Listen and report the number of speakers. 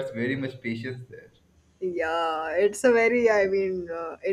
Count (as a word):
two